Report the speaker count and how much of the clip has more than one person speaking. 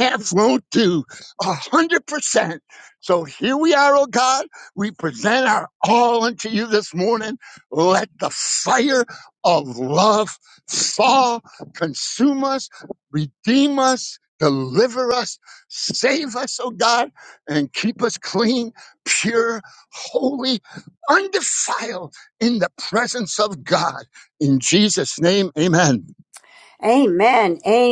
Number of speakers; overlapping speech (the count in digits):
2, no overlap